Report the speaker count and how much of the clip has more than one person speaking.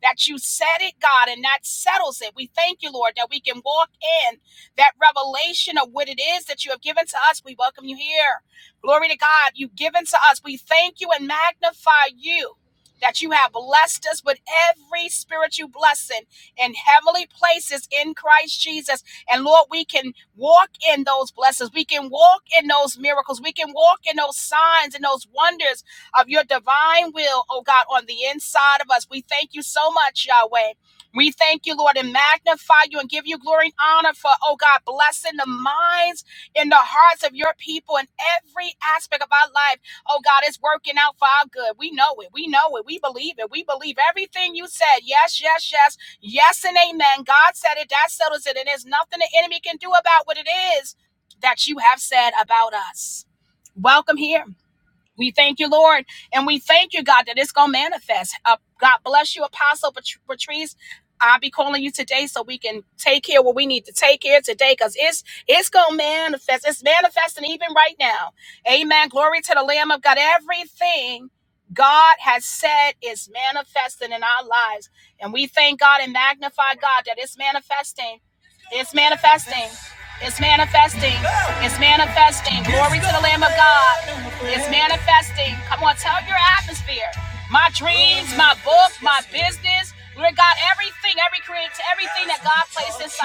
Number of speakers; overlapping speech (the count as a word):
one, no overlap